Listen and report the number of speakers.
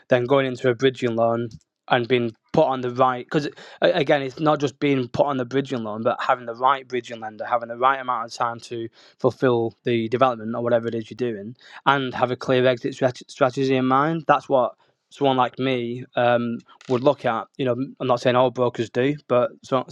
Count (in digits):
1